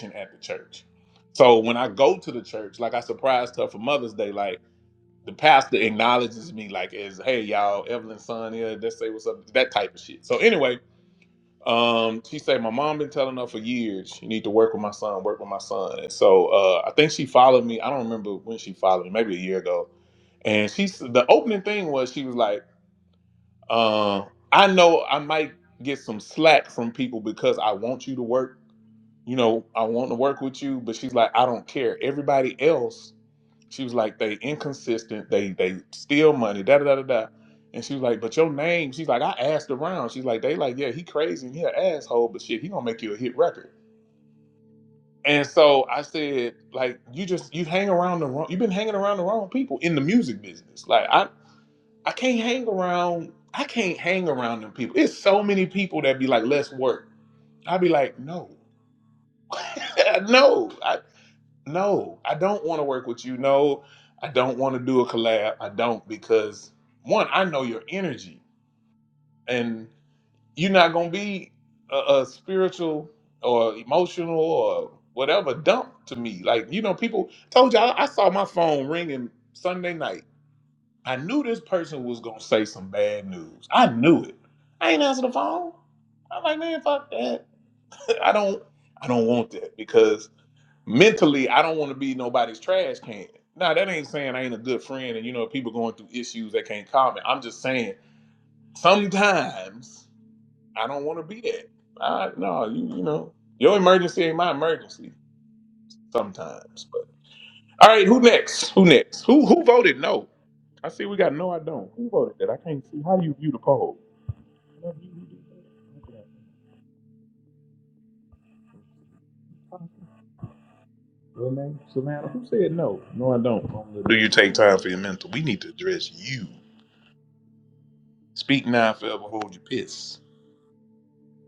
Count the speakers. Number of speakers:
one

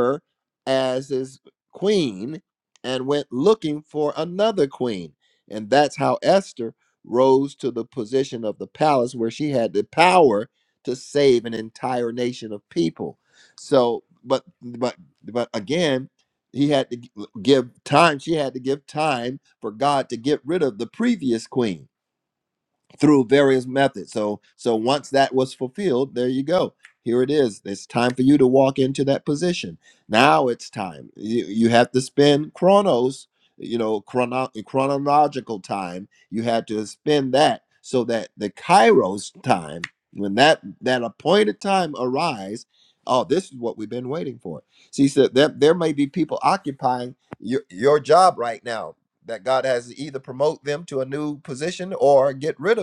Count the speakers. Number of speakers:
one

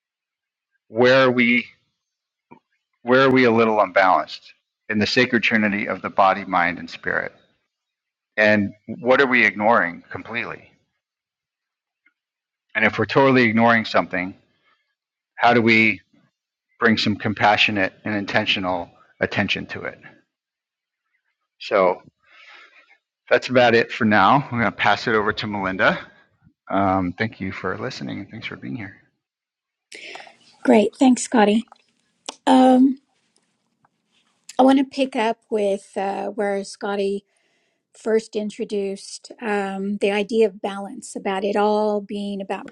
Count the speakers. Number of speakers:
two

